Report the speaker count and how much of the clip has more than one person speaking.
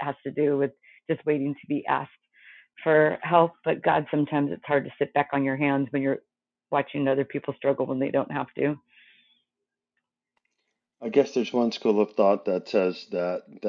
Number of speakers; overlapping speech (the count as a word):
two, no overlap